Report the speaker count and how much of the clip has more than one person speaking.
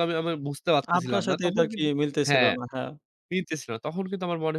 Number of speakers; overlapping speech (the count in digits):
2, about 28%